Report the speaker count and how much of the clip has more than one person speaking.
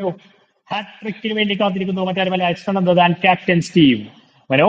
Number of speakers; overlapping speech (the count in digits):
1, no overlap